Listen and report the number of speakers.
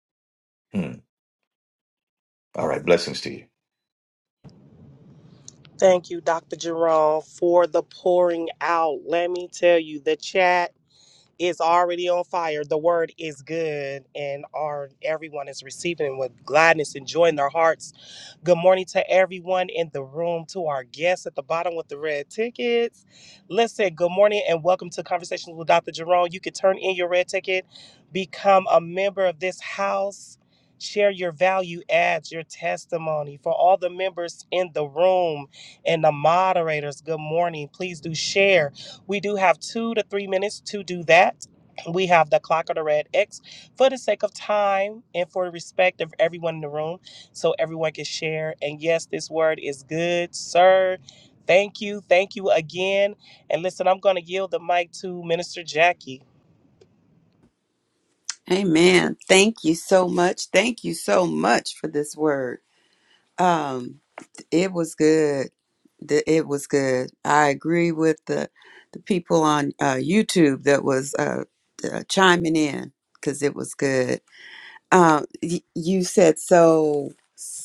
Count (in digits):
3